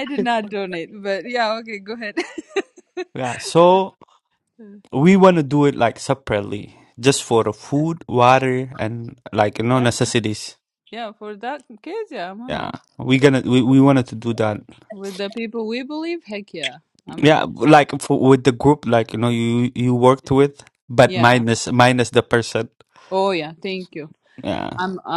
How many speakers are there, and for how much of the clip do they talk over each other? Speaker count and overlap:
2, about 5%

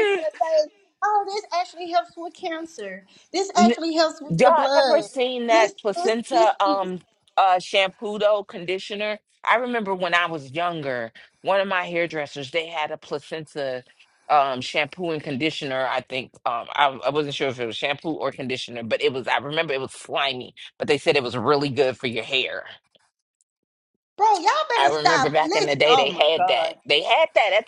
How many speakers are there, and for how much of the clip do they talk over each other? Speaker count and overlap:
2, about 15%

